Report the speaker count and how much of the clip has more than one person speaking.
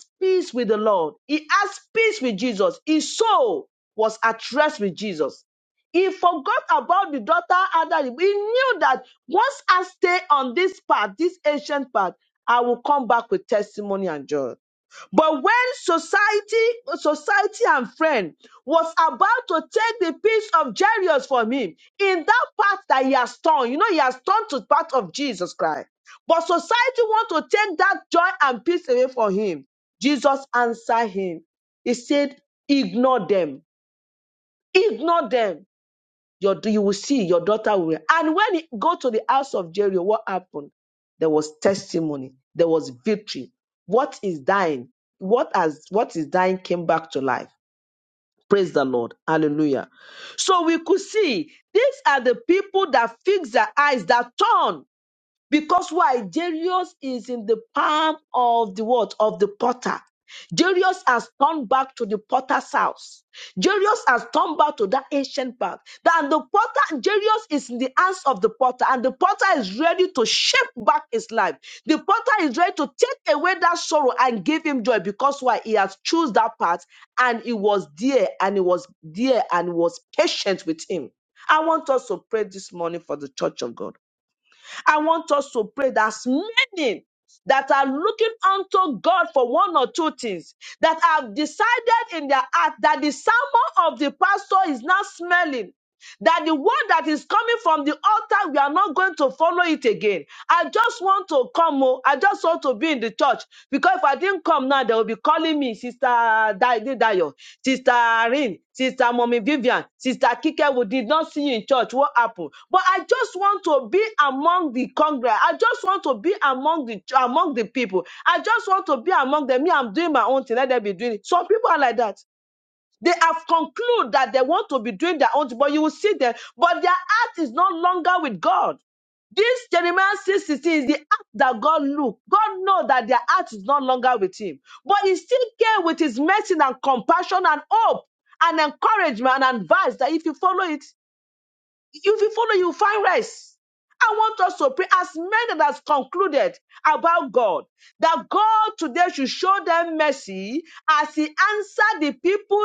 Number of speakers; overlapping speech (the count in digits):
1, no overlap